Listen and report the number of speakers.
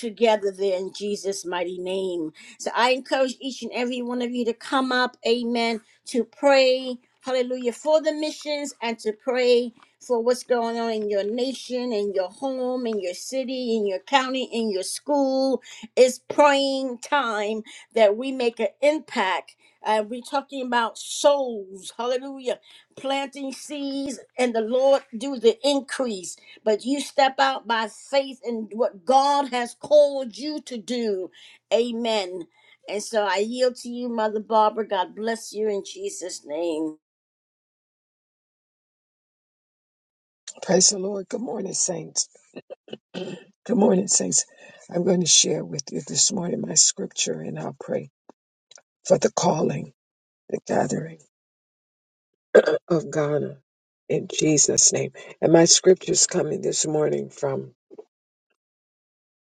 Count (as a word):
two